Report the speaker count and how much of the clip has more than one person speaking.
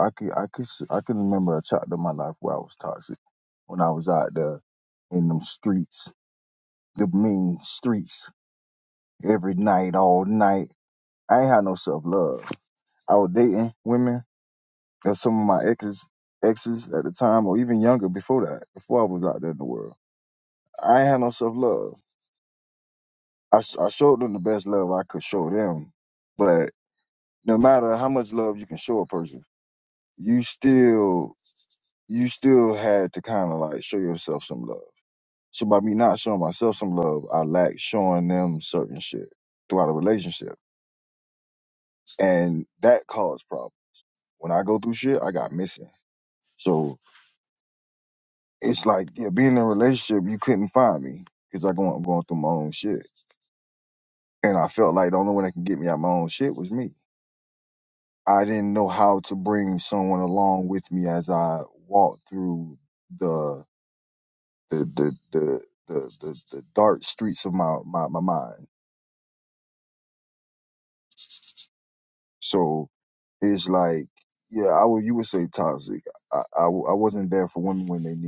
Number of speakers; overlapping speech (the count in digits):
1, no overlap